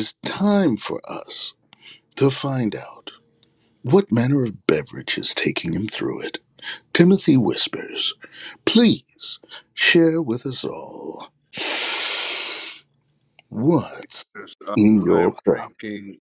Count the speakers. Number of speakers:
two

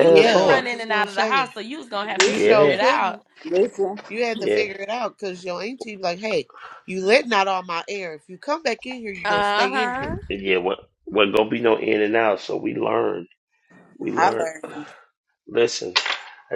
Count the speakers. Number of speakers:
four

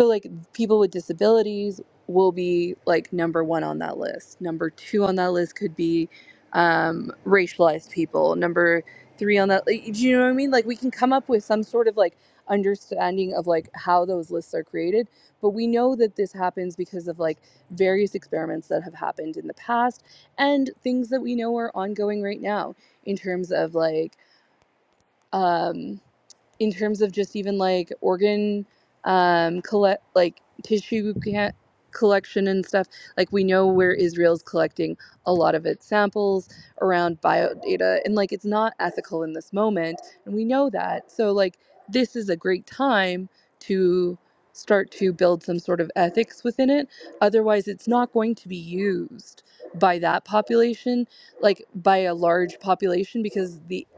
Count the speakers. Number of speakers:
one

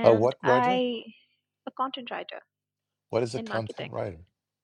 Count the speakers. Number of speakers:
two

